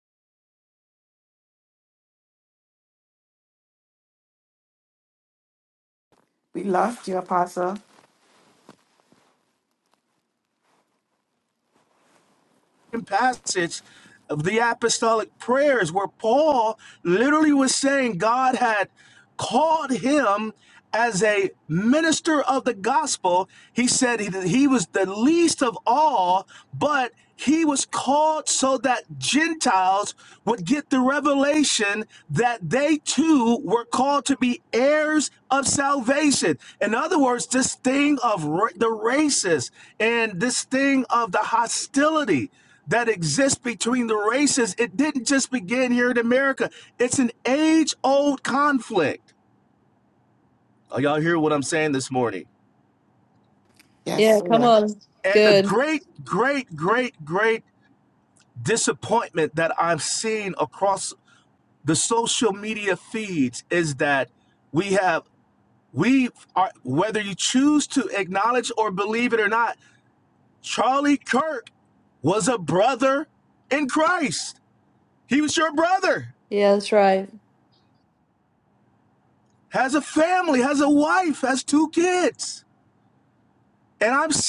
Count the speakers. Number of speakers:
3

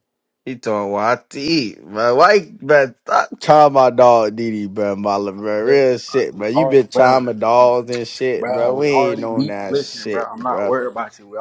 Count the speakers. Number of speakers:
2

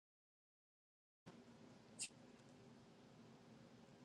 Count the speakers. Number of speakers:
0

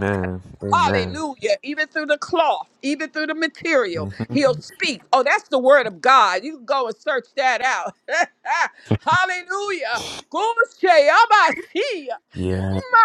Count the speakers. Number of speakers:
2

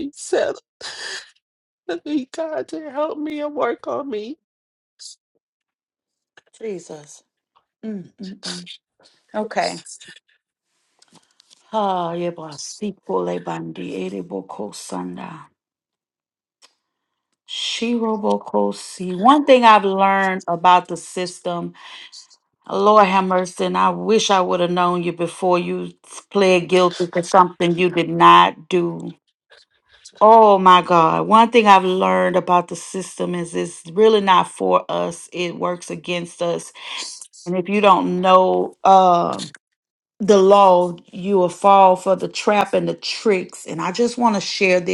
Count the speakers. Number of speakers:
2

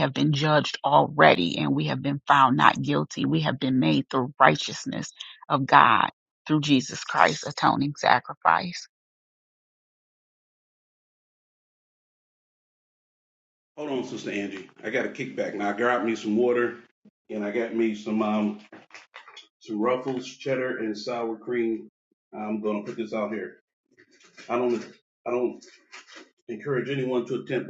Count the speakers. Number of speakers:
2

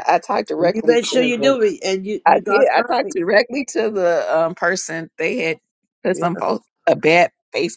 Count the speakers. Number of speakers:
2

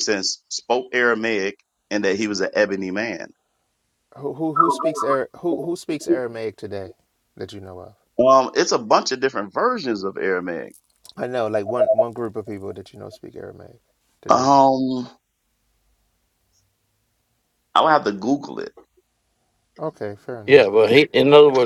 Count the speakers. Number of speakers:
3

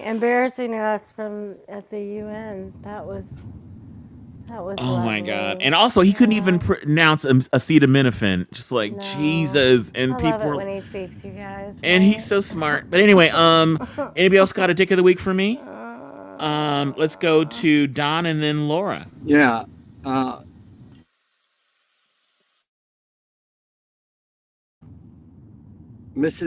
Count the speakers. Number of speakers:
3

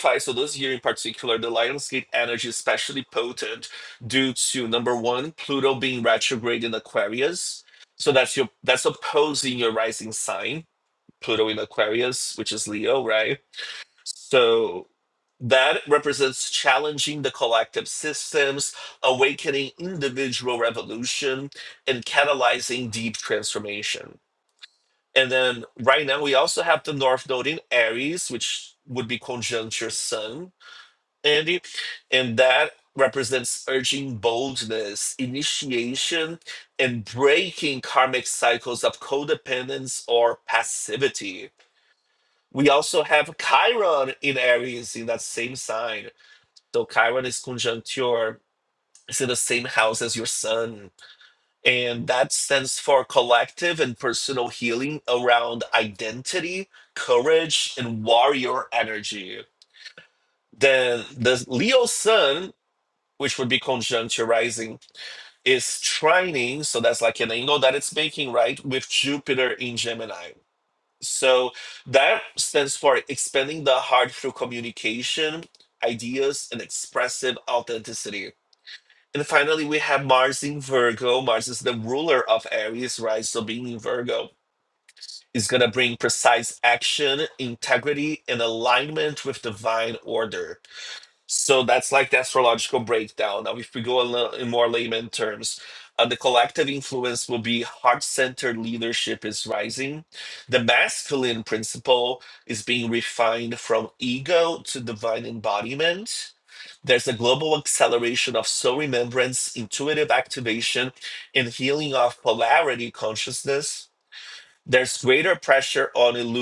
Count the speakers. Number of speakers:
1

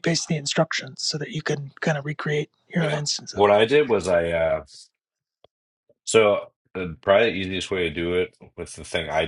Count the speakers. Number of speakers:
2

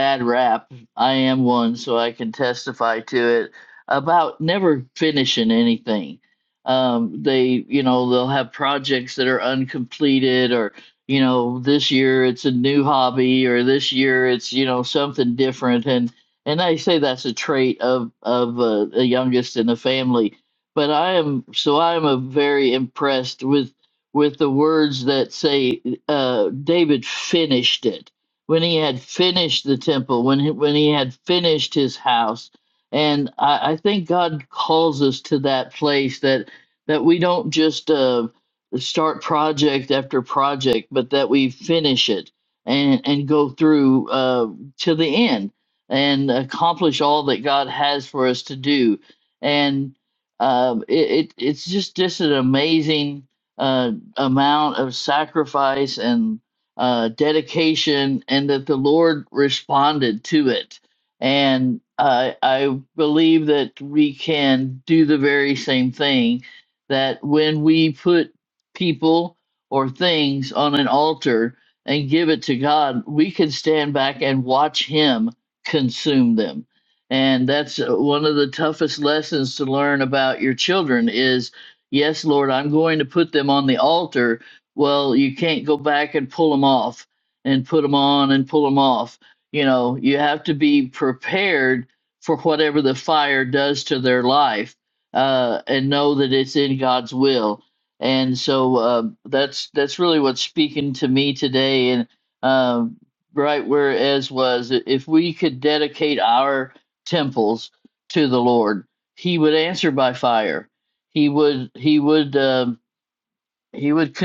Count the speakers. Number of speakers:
1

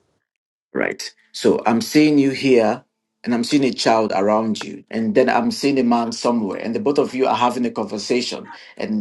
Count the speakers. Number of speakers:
1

